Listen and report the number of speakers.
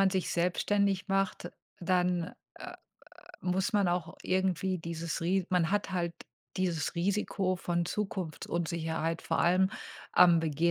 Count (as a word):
one